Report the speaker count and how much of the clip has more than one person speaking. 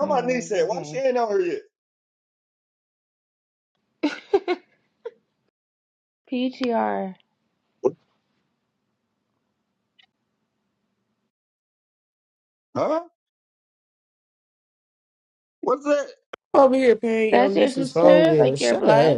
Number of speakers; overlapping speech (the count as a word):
three, about 15%